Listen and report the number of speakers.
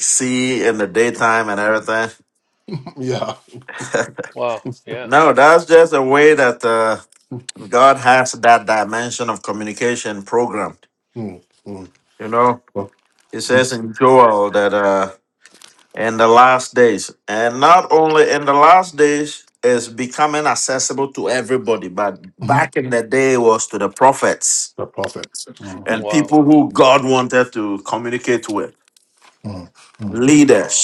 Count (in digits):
3